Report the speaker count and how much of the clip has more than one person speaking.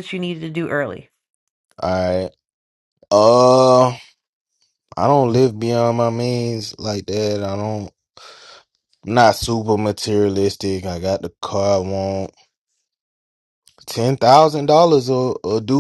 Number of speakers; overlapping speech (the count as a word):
two, no overlap